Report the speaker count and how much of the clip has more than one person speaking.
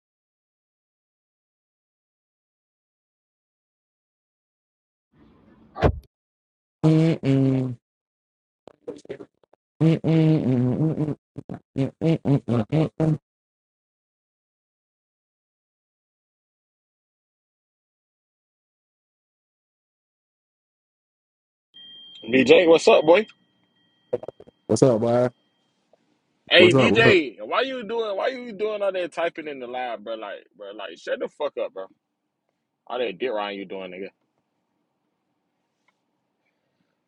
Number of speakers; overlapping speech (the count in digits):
2, about 1%